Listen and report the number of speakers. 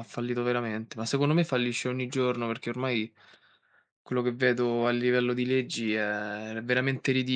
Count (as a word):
one